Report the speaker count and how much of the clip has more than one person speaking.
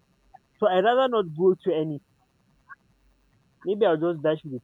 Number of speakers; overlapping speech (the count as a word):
one, no overlap